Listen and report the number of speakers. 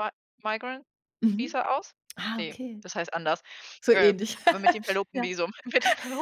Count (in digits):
2